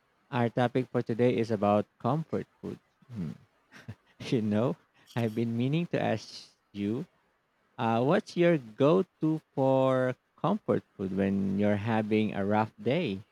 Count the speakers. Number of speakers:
1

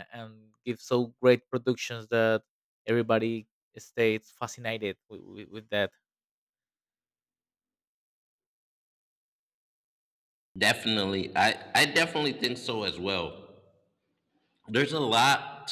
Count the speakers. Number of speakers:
2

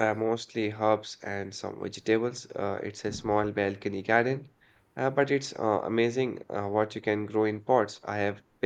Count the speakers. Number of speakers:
1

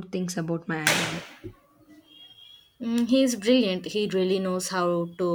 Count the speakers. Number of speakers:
2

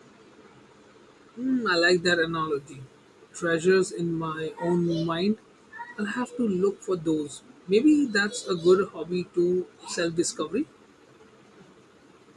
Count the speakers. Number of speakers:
1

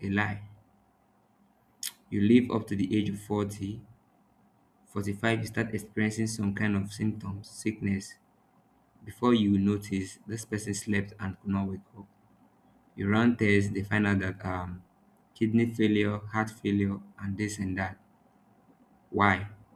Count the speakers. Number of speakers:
1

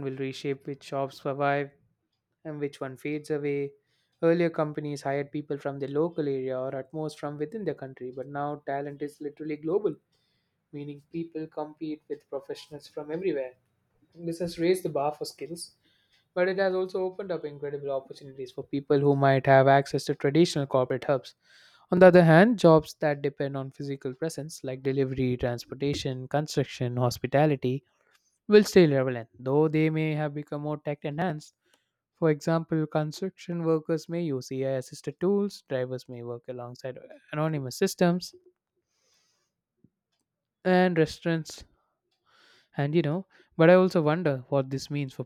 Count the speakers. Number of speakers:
1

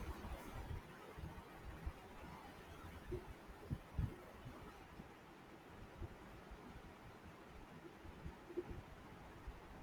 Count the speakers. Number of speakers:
0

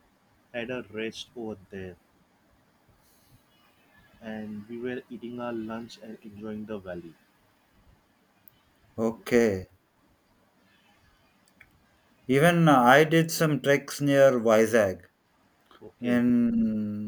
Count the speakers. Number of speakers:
2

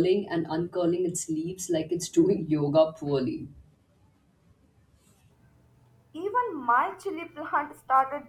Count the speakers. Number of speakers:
2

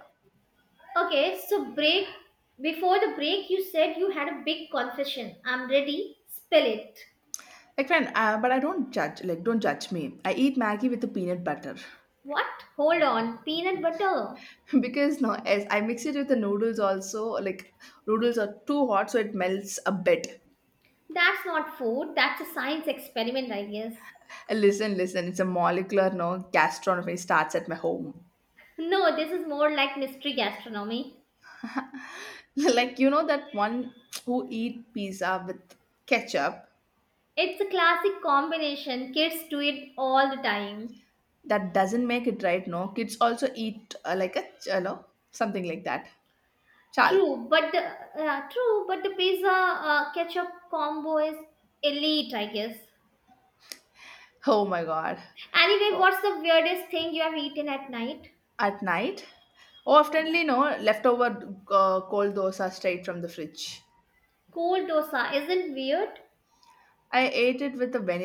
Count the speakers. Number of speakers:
2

